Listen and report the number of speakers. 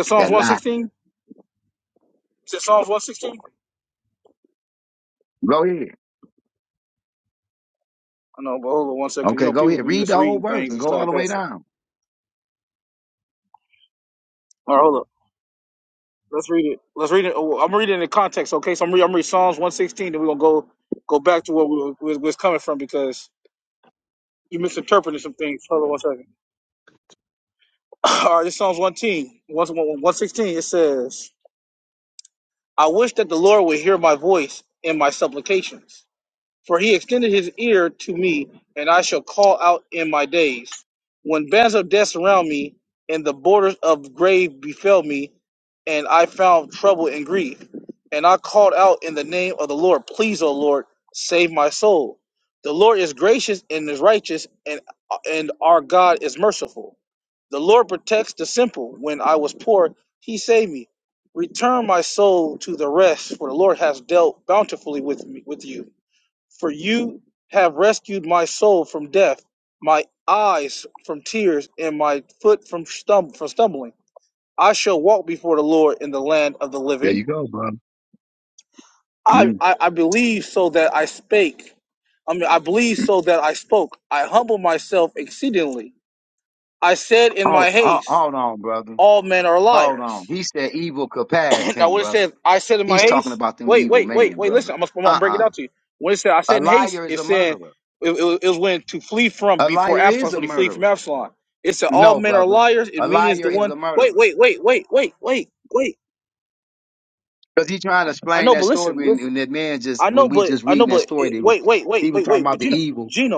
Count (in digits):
2